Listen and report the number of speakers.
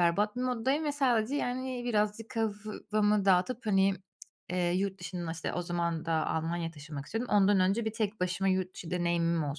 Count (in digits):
1